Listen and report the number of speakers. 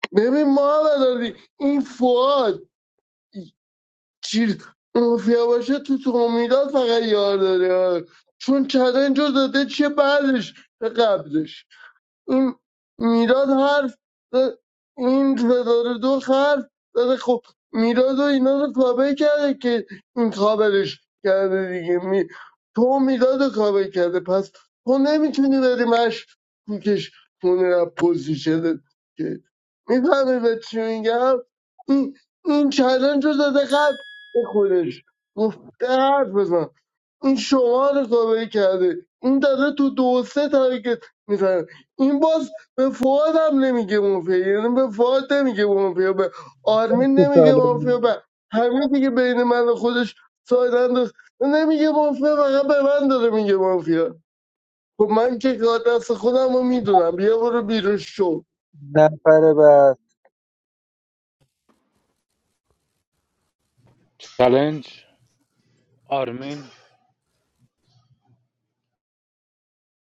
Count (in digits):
3